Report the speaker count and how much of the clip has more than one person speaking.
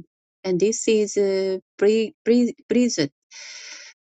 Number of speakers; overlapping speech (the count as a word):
one, no overlap